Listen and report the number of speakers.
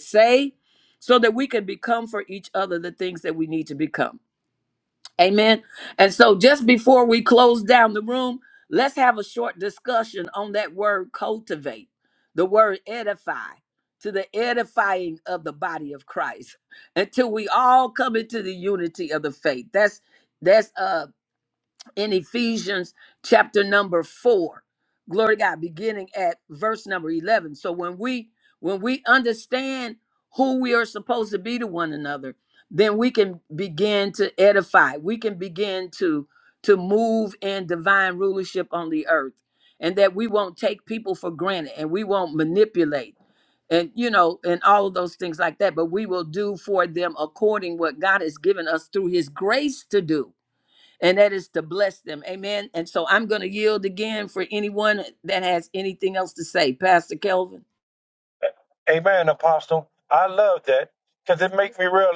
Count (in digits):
2